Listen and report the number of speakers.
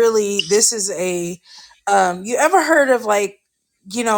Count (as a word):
one